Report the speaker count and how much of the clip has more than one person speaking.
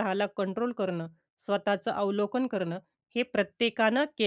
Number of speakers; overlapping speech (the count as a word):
one, no overlap